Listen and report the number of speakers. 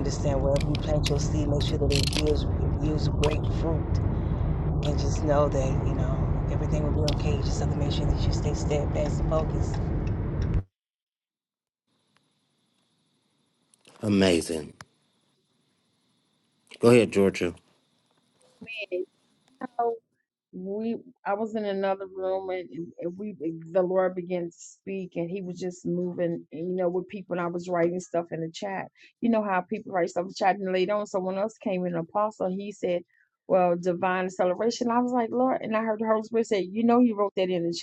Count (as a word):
three